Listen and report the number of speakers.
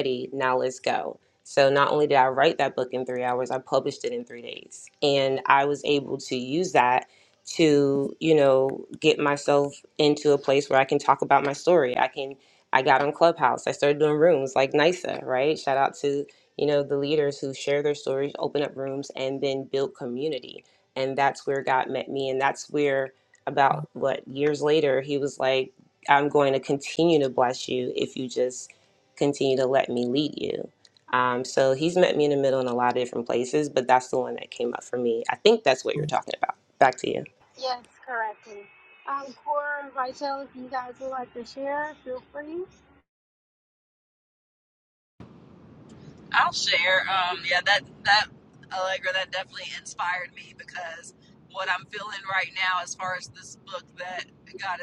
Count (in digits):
3